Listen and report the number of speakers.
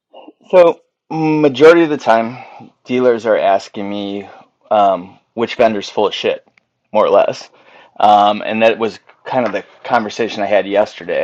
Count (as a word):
one